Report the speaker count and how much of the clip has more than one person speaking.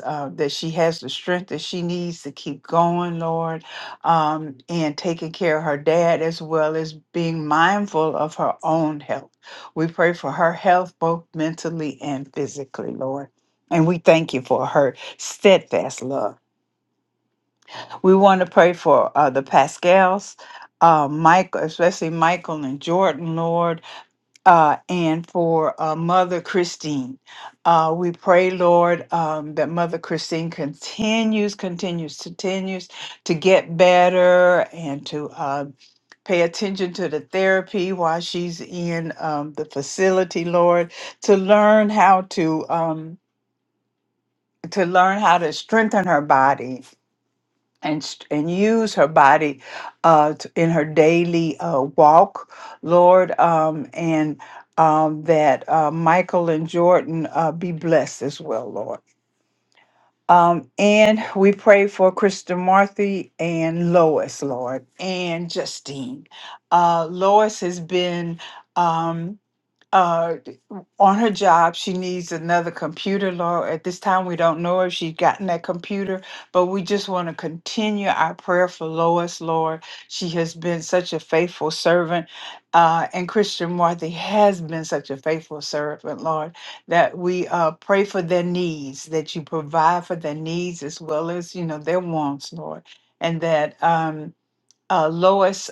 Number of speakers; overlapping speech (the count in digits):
1, no overlap